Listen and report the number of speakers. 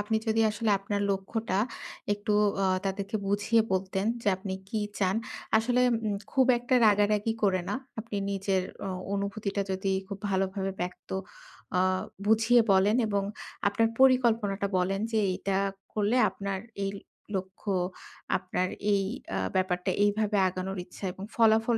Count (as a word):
one